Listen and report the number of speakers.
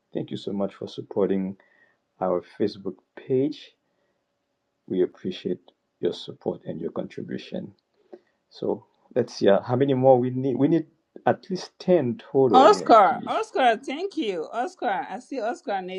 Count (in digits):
2